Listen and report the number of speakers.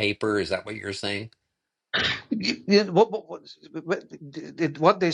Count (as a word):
two